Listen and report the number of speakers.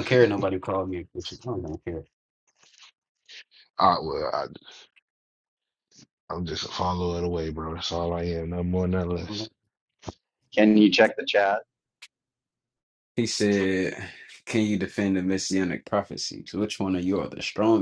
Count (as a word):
three